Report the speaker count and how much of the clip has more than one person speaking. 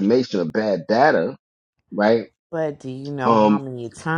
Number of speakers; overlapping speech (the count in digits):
2, about 9%